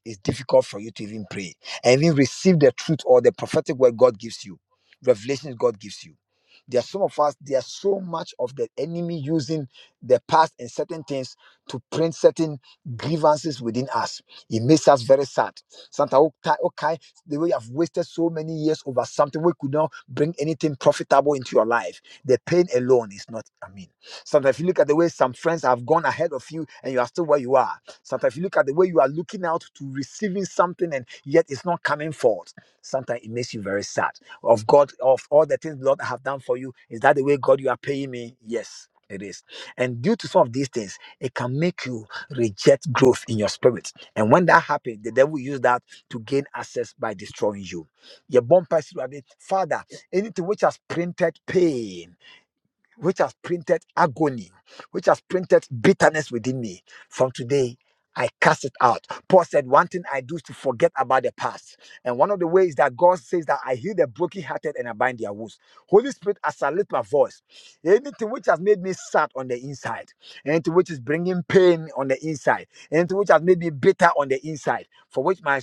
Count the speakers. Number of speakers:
one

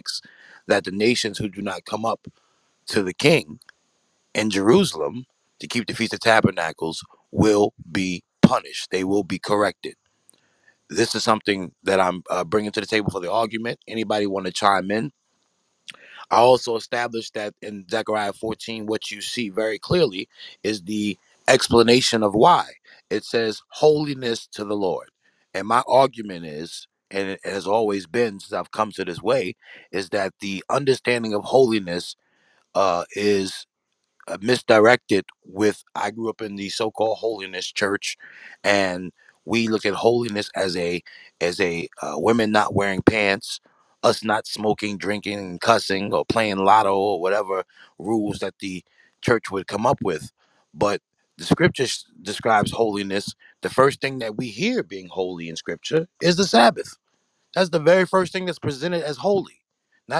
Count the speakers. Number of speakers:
one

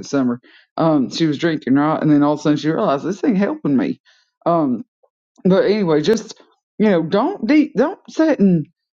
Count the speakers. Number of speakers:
one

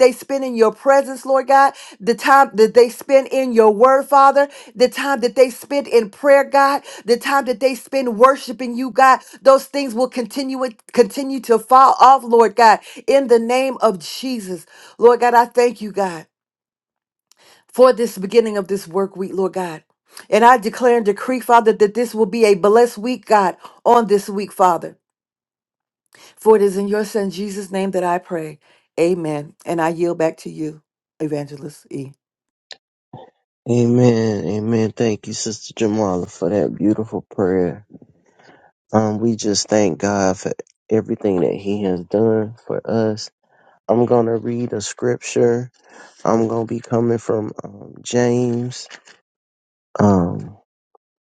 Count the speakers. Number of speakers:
two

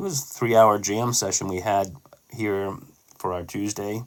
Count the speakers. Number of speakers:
one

